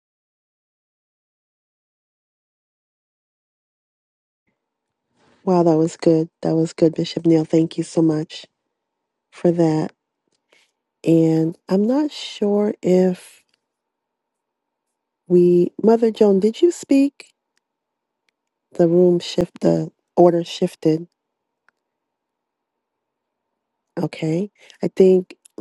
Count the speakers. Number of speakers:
1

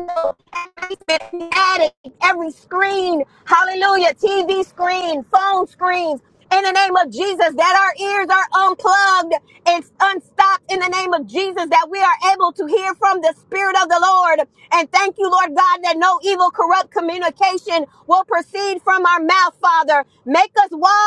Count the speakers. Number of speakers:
1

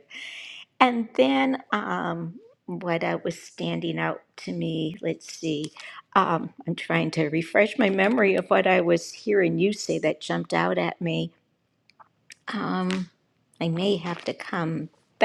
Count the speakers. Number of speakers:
1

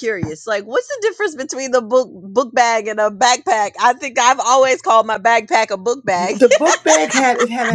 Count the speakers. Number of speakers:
2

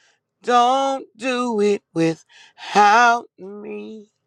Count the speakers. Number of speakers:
1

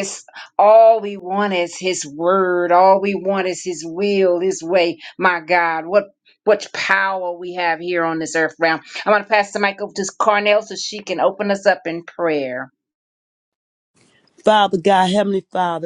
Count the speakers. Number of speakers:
2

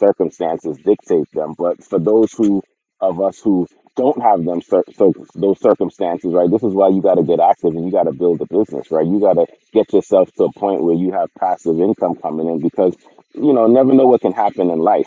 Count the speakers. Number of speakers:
1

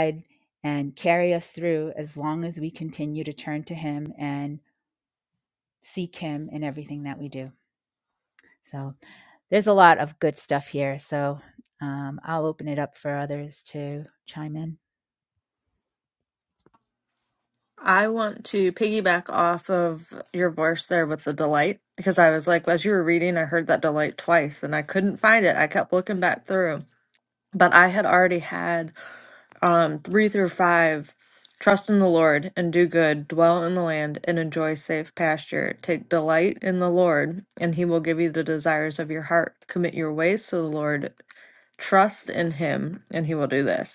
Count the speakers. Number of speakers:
2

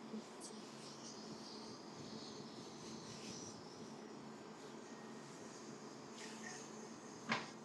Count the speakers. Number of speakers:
0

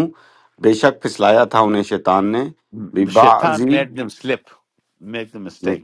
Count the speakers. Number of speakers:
2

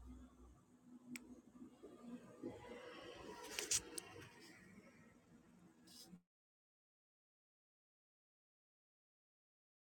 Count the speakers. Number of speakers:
0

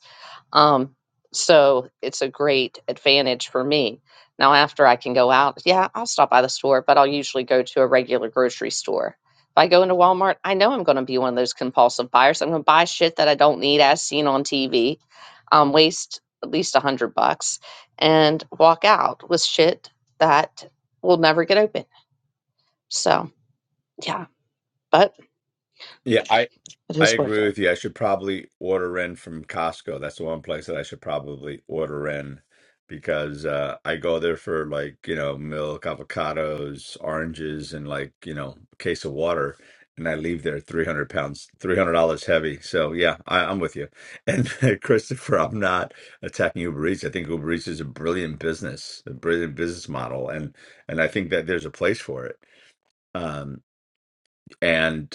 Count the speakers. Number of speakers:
2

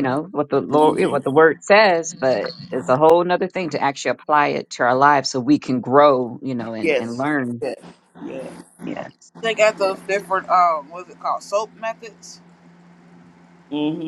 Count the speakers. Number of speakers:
3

